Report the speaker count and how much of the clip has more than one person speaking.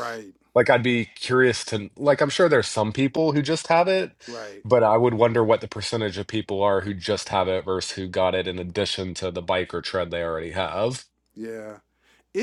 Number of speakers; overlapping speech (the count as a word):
two, no overlap